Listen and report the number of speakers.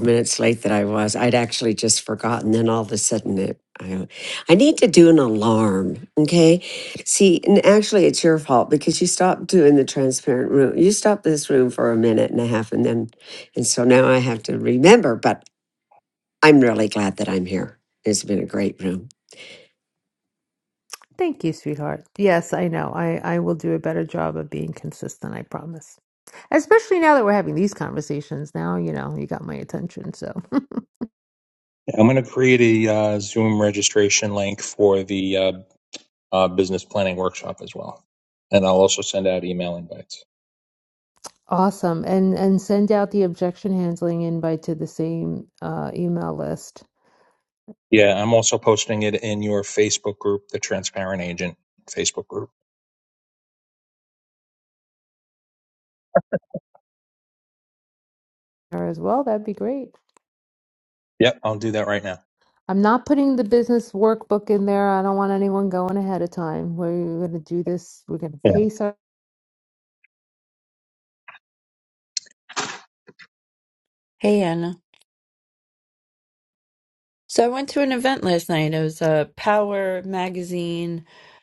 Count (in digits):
4